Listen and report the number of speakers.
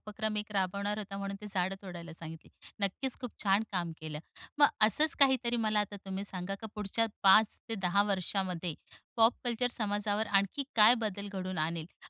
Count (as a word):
one